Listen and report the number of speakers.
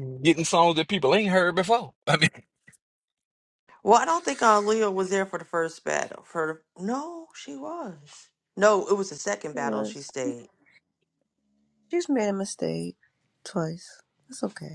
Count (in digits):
3